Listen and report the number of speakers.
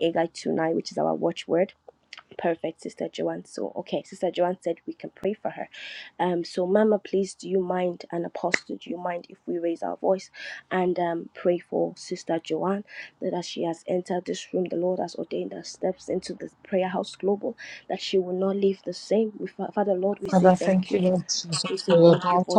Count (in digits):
2